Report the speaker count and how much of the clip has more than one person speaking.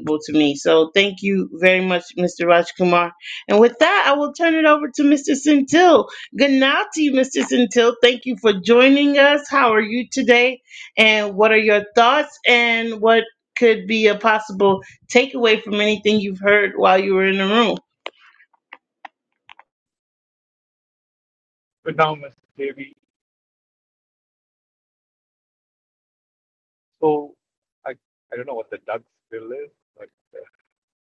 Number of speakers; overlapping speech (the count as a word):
two, no overlap